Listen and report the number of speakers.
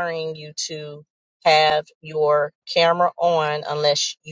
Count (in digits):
1